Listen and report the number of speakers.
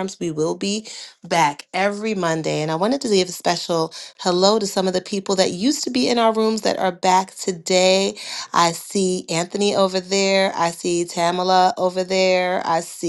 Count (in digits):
1